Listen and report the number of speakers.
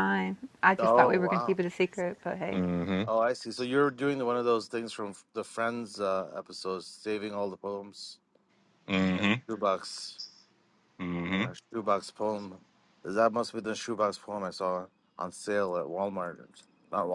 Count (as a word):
three